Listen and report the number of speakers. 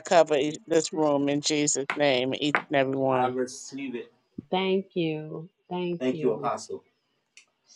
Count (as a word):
three